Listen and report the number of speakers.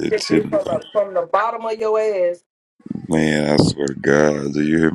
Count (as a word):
two